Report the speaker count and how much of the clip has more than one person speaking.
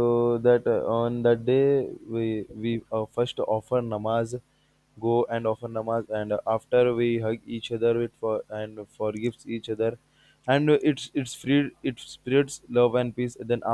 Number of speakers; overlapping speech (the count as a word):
one, no overlap